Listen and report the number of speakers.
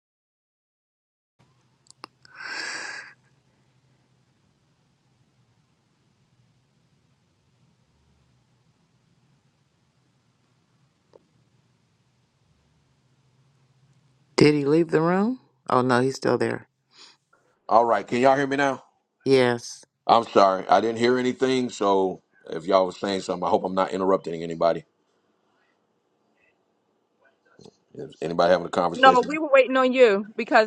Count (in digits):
3